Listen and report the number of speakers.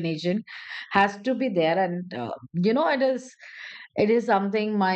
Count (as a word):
one